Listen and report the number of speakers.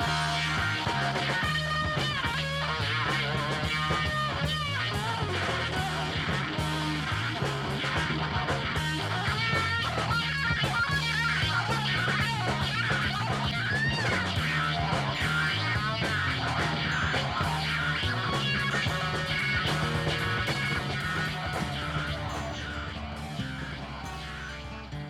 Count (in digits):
0